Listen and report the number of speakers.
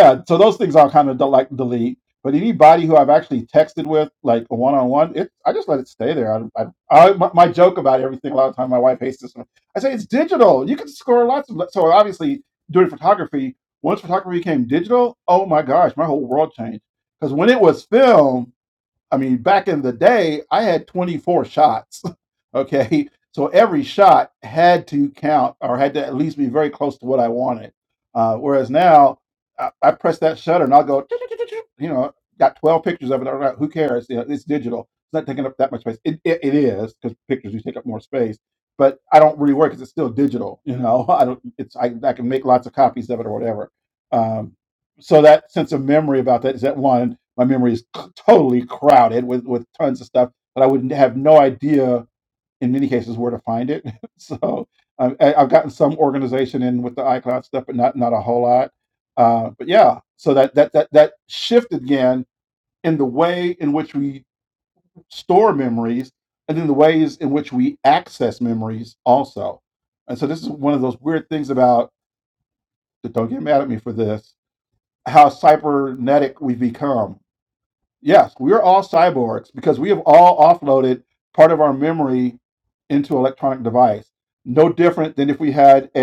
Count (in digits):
1